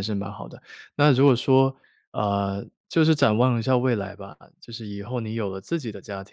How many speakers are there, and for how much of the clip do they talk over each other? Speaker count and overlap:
1, no overlap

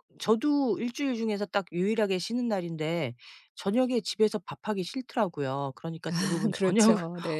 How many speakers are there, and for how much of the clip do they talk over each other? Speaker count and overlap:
2, about 14%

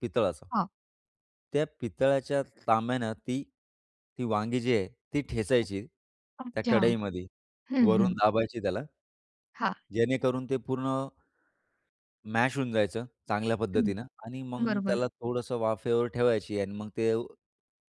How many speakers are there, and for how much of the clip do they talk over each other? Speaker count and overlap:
2, about 6%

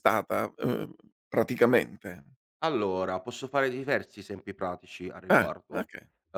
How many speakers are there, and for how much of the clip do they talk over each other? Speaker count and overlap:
2, about 8%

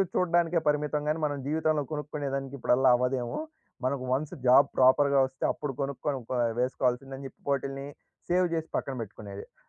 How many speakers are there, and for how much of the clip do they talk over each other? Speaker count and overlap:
1, no overlap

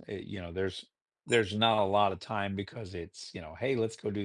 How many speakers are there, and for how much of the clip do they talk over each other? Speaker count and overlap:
1, no overlap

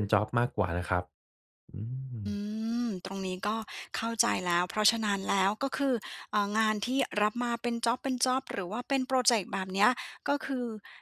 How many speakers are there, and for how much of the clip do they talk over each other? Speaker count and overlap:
2, no overlap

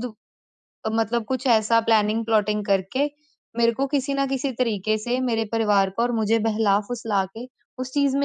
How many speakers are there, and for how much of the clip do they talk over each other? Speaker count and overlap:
1, no overlap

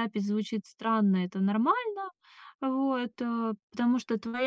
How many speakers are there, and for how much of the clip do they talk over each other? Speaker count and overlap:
1, no overlap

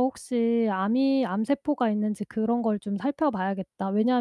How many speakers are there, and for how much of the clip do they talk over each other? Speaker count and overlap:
1, no overlap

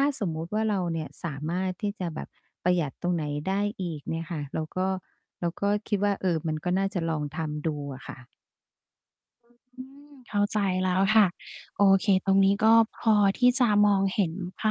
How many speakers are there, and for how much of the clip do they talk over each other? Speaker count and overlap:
2, no overlap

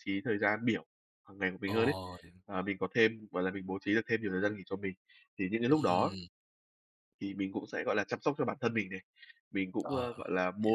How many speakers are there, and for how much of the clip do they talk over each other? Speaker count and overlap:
2, about 9%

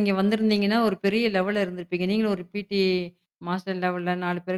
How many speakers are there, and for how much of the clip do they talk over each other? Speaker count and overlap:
1, no overlap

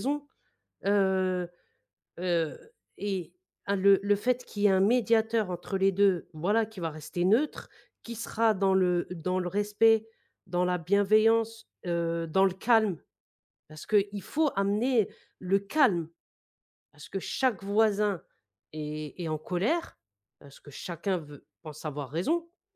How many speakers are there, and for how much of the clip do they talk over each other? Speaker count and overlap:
1, no overlap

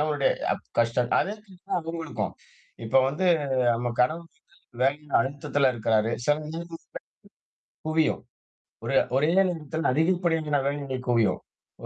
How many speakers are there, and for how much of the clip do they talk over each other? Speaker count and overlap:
1, no overlap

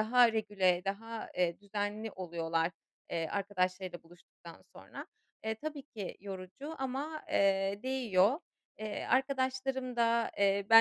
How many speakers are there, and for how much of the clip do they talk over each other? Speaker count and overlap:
1, no overlap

